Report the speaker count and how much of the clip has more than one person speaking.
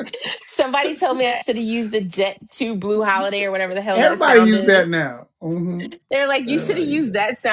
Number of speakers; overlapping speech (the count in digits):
2, about 21%